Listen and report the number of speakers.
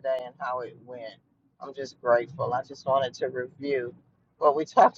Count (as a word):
one